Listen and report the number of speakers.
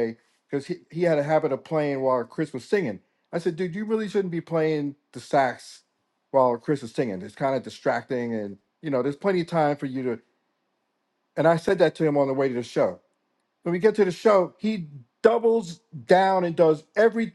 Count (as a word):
one